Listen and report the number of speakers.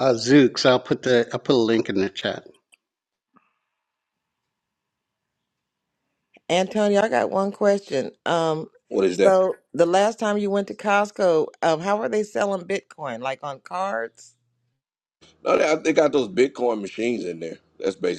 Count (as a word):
three